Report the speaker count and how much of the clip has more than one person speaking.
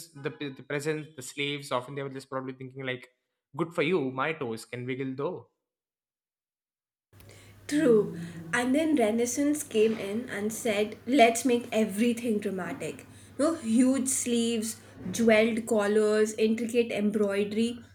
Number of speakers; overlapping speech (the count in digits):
2, no overlap